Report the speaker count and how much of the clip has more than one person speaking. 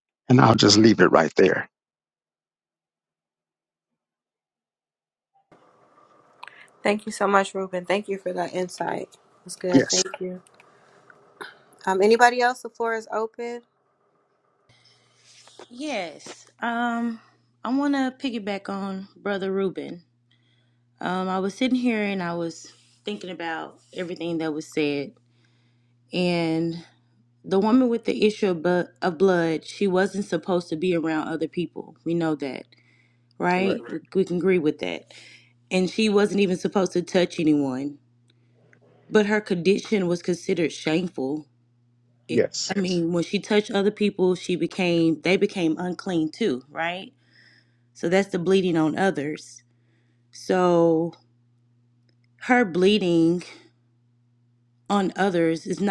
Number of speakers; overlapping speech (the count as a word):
three, about 1%